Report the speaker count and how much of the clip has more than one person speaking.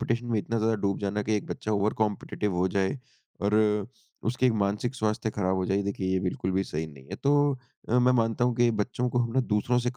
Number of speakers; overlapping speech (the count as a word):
one, no overlap